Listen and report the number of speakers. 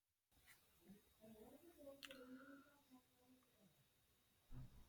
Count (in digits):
0